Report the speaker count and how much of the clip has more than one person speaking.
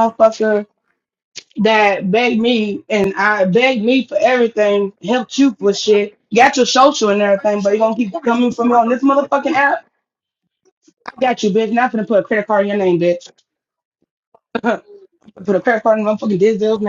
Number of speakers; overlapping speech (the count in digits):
1, no overlap